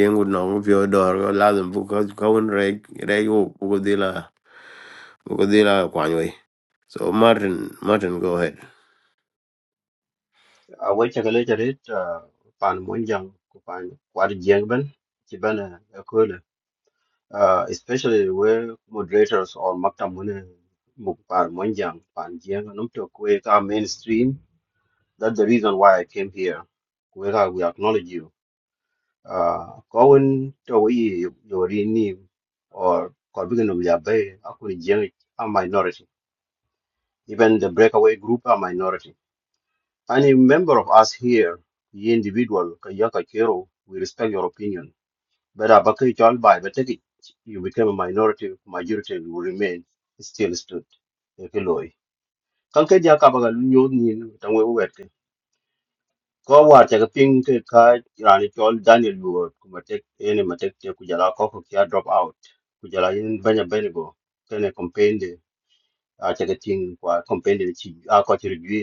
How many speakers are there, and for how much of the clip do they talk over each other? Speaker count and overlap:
two, no overlap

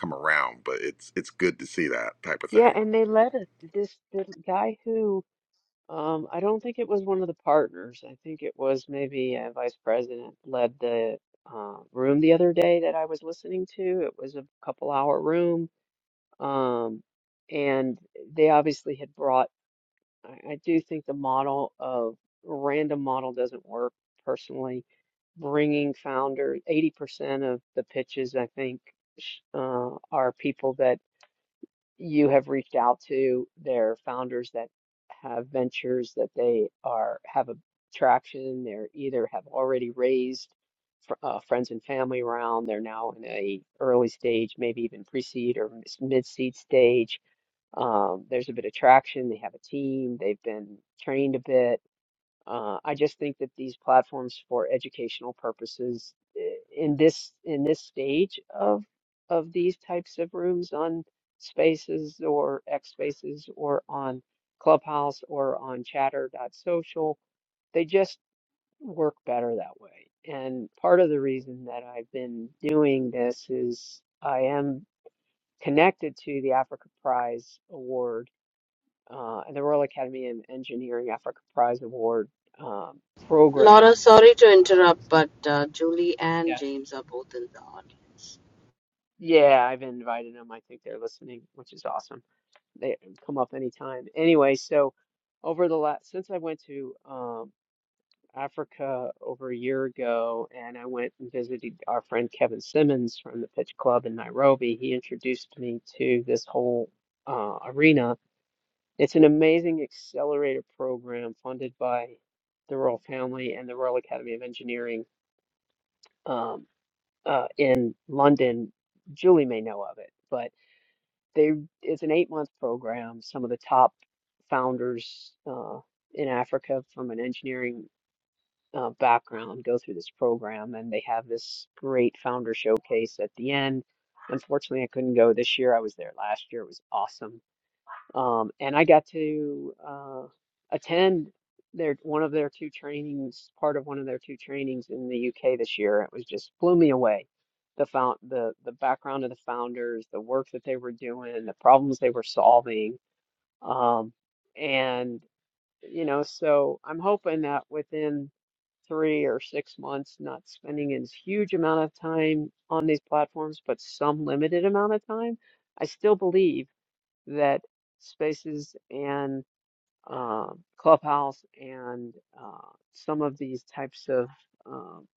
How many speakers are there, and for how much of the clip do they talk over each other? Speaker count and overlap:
three, about 1%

